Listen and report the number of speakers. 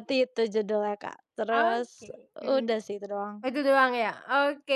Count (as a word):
two